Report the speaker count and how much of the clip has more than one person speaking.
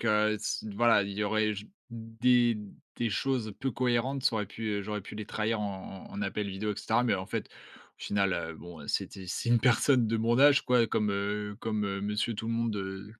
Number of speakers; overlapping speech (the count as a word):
one, no overlap